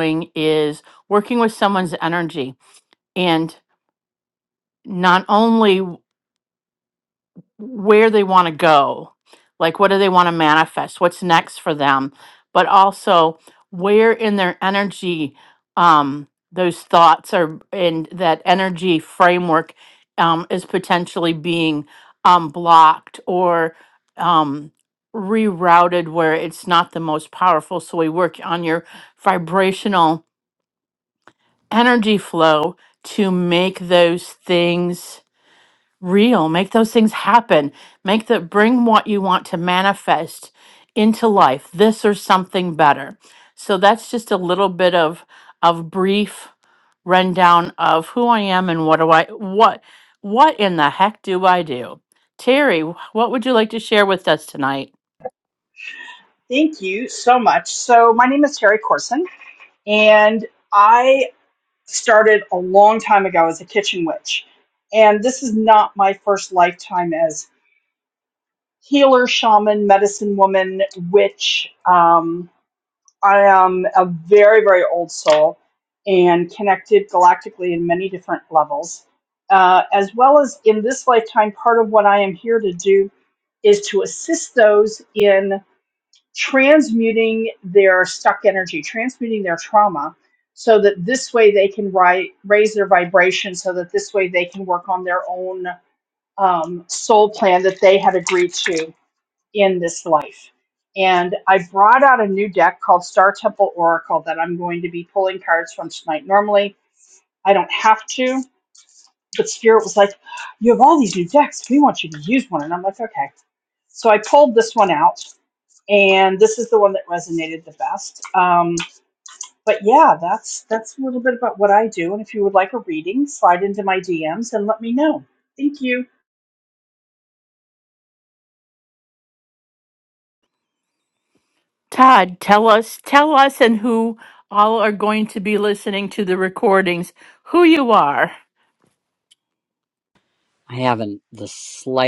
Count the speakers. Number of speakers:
three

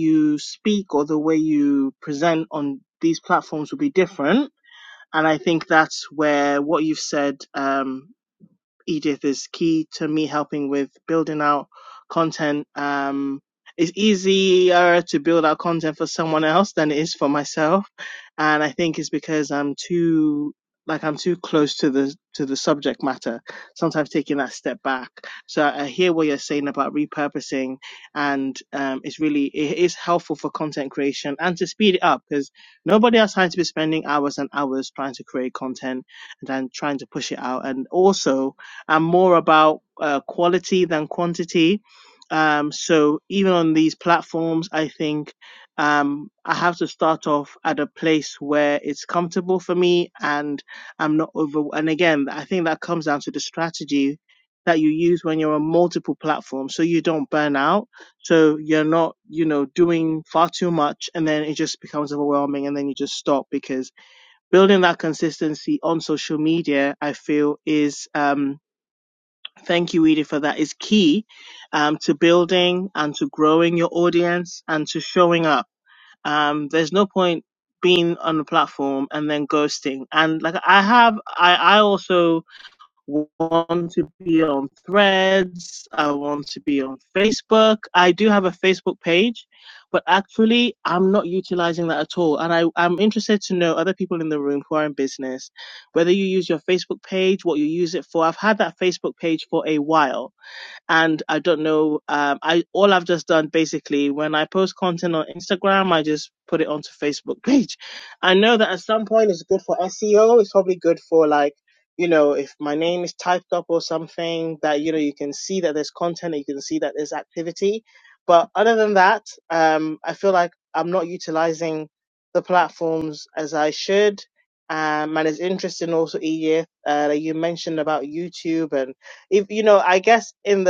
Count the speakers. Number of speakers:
one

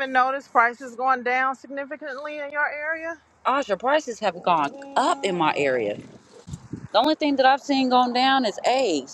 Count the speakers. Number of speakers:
two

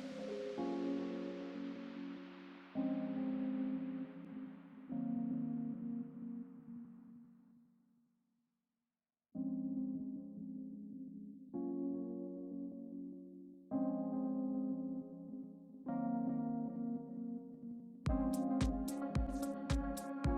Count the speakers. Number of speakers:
zero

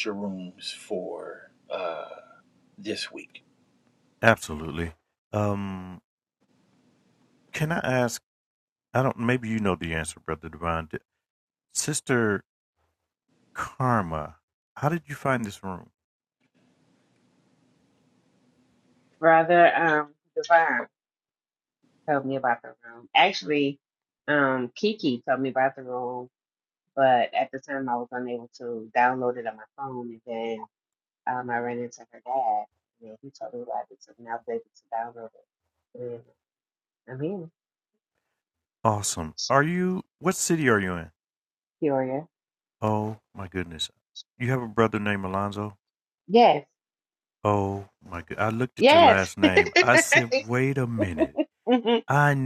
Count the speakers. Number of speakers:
three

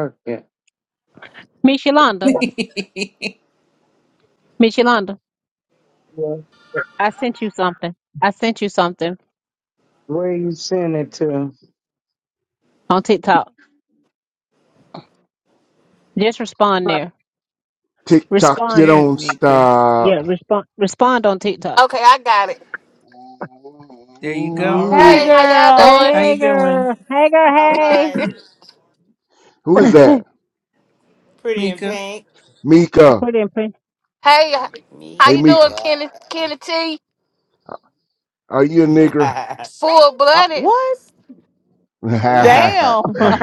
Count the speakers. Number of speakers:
seven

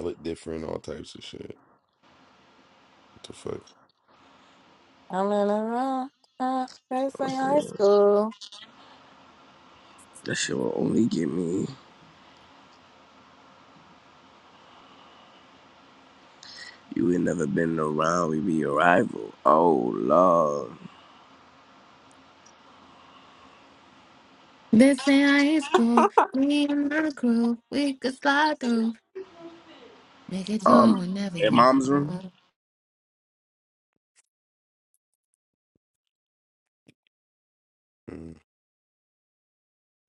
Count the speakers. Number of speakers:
four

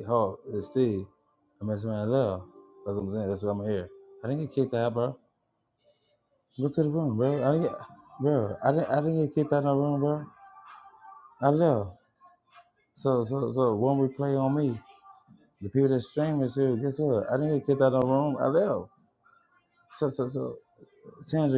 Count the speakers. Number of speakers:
one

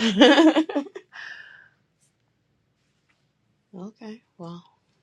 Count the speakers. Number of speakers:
one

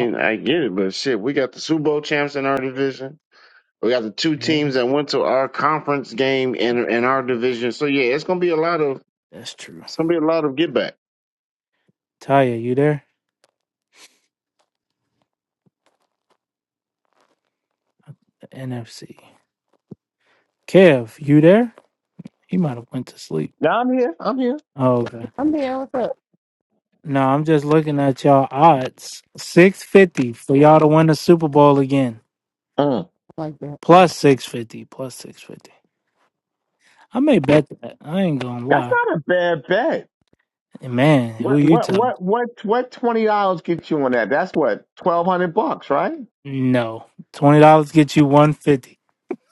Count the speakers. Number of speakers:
four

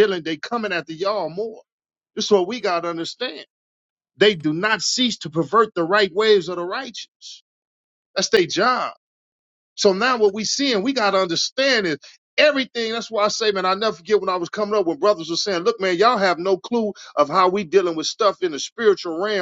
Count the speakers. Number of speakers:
one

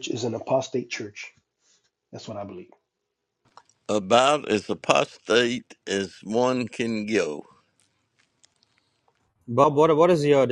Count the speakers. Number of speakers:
three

